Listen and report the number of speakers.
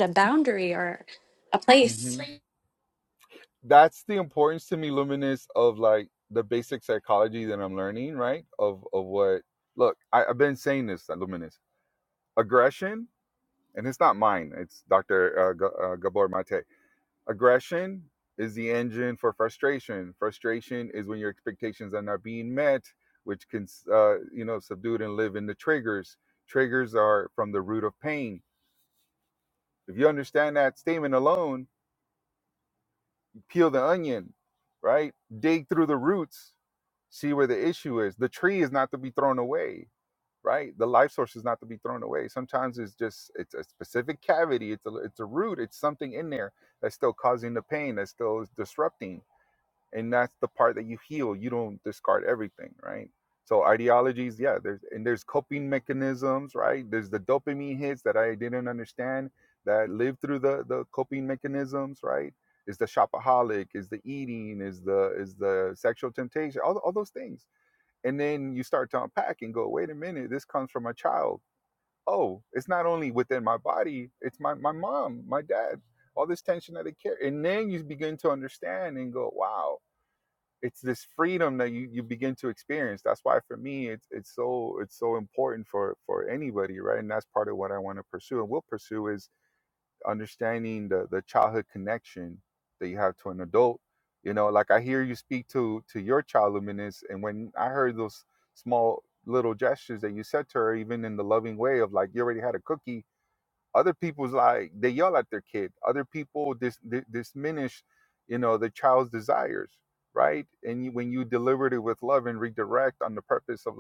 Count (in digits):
2